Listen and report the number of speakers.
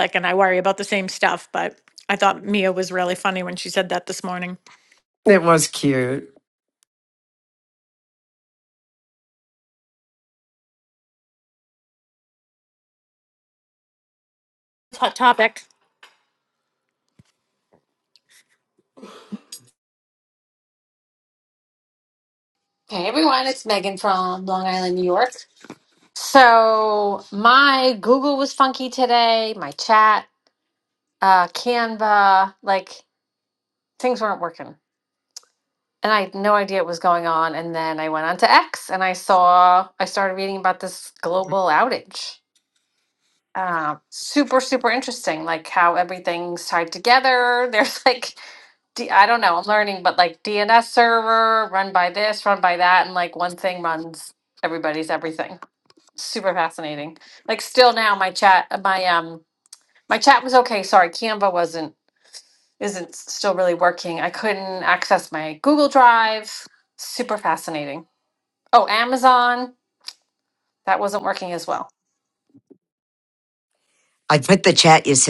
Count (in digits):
3